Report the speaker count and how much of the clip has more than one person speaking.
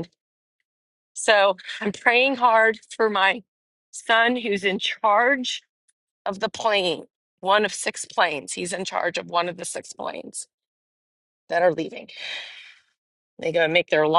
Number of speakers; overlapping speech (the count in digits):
1, no overlap